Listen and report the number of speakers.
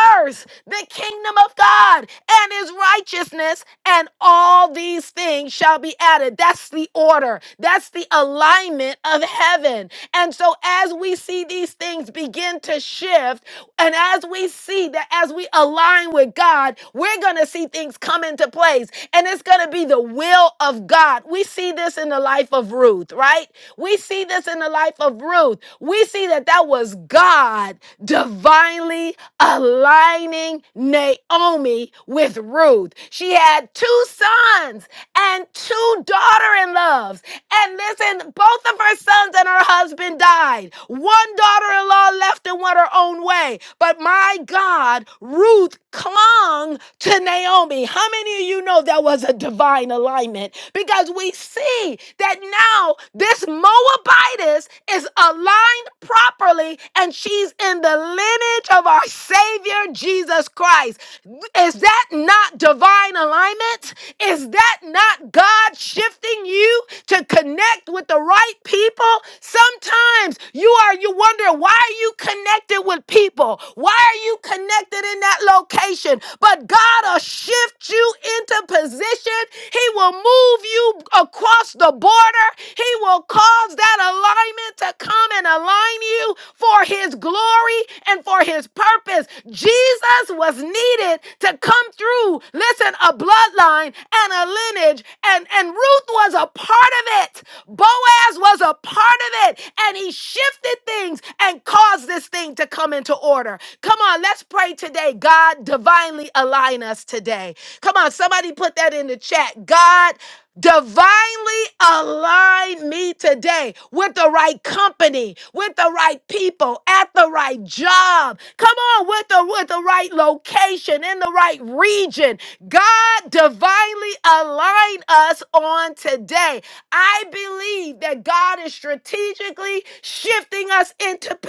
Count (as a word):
one